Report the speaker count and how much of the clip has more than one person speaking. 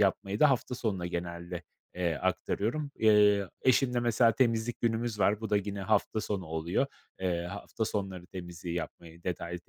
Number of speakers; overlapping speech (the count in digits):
1, no overlap